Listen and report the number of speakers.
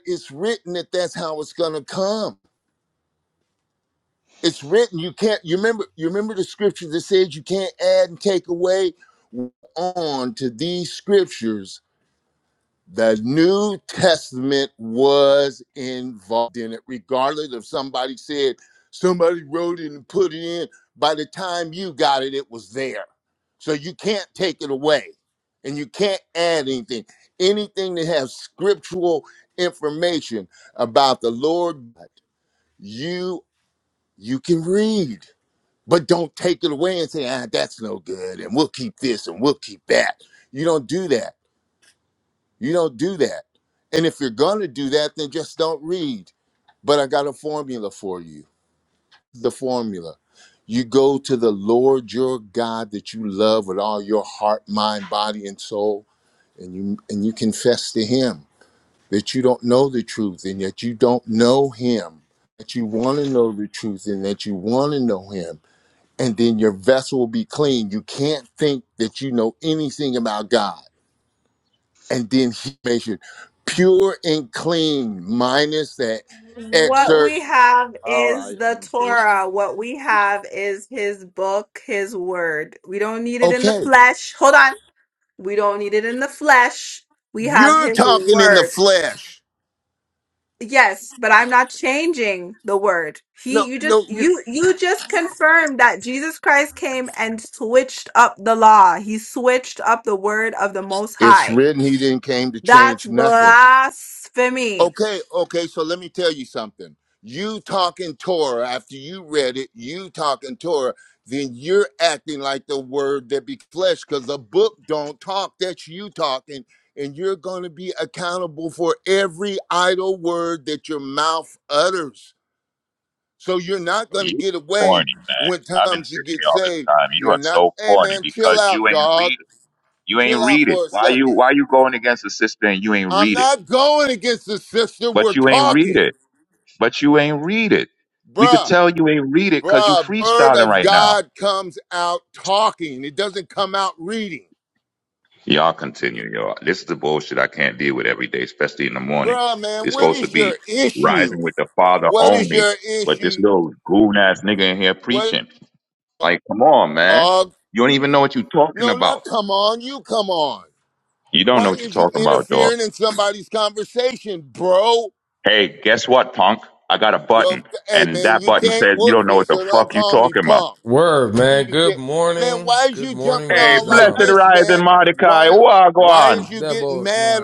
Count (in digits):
4